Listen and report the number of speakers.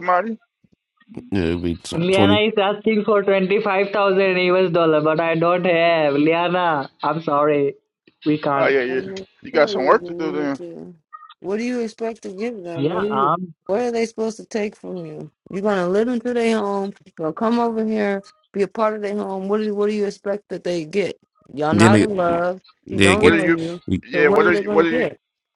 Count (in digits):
4